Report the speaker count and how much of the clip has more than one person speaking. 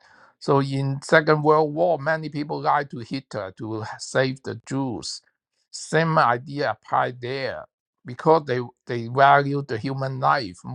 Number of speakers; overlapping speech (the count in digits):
1, no overlap